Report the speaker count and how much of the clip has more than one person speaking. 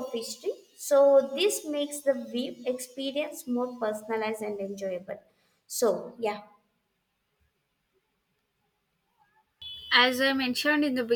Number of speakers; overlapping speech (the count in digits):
2, no overlap